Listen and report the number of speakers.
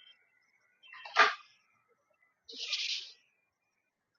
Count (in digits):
0